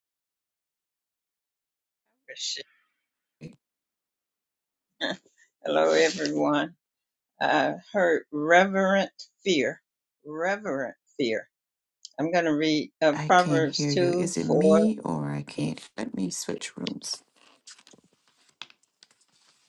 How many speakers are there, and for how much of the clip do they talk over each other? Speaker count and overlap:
2, about 9%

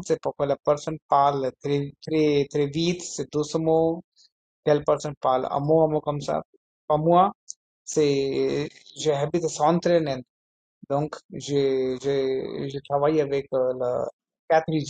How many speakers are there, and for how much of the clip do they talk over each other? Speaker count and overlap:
1, no overlap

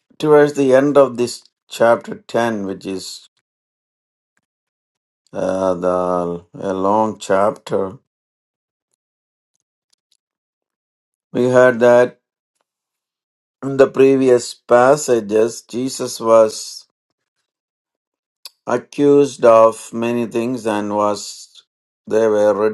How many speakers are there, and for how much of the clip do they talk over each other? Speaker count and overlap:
1, no overlap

